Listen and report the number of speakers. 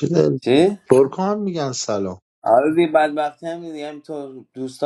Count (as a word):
two